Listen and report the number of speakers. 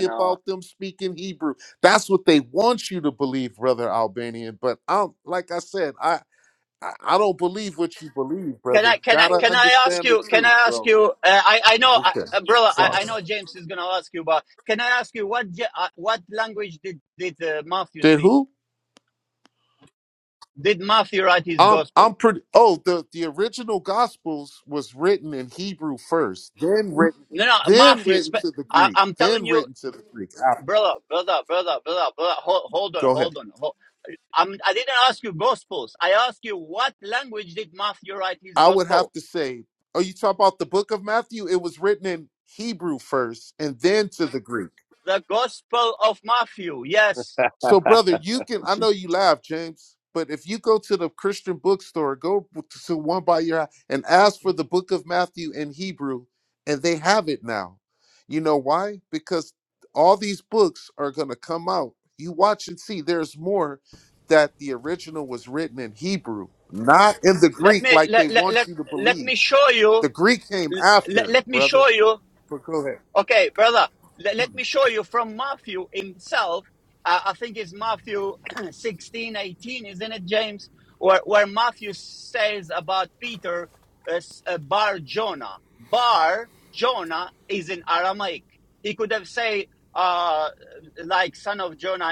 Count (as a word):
two